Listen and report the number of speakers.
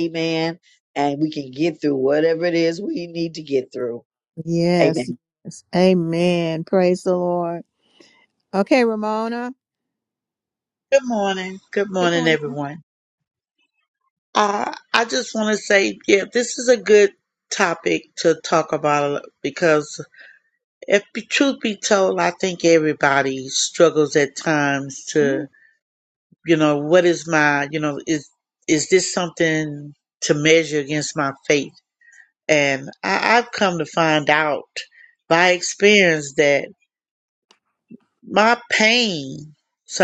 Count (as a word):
three